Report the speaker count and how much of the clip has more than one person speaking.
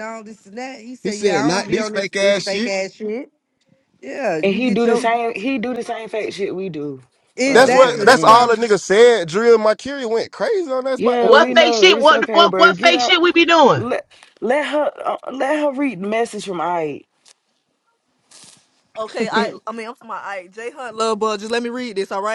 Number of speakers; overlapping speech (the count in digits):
5, about 25%